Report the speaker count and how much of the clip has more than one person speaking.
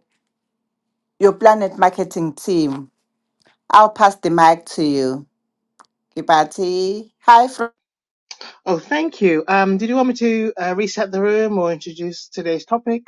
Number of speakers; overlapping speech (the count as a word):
two, no overlap